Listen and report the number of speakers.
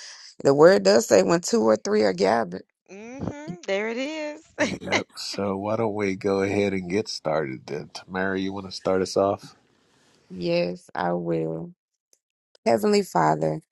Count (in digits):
3